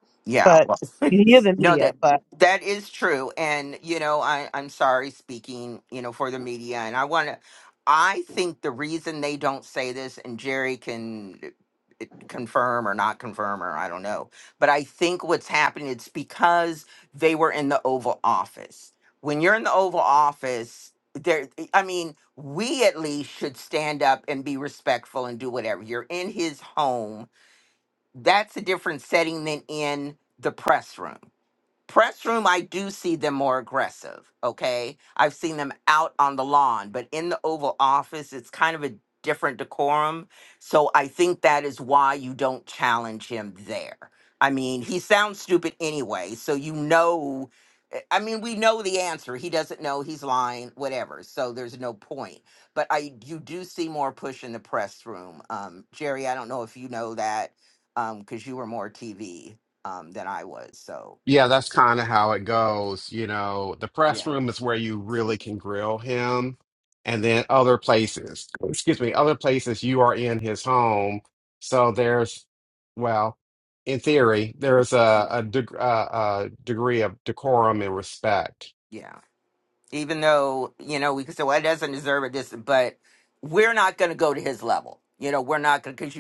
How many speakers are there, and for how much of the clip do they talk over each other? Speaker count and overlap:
3, about 1%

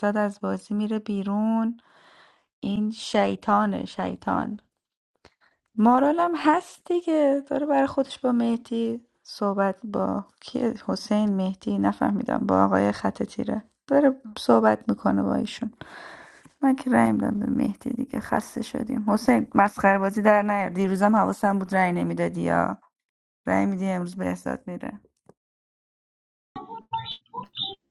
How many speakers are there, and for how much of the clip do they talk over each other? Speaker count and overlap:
1, no overlap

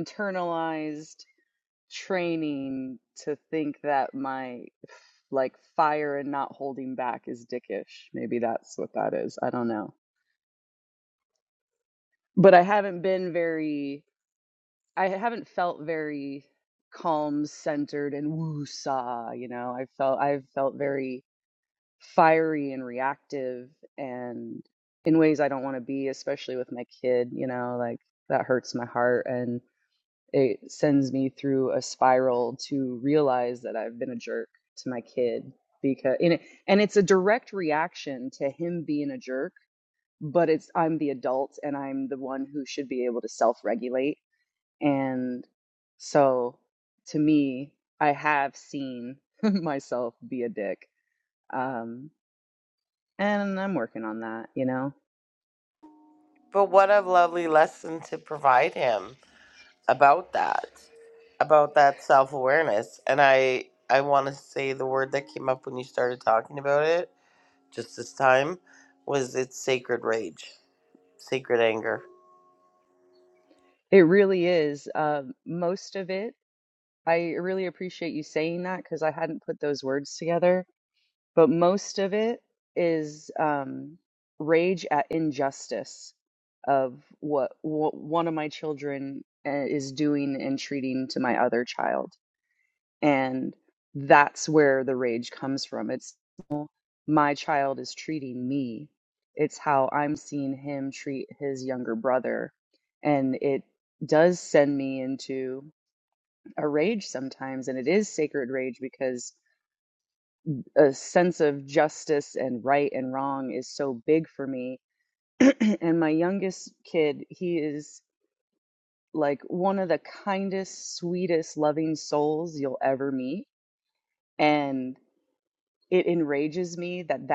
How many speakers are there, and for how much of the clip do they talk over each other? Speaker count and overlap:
2, no overlap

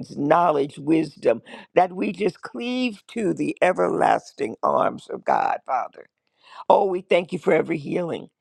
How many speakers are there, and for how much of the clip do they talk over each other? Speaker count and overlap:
1, no overlap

